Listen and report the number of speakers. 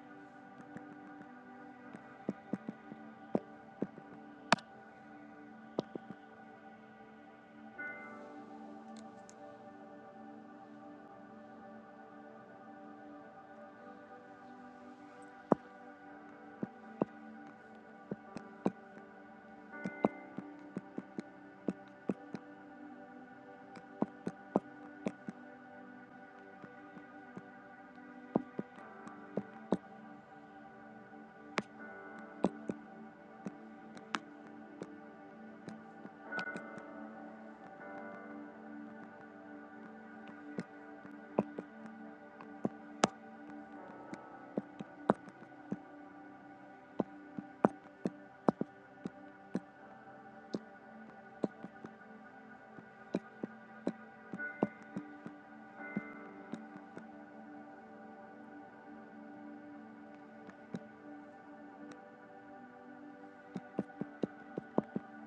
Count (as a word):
zero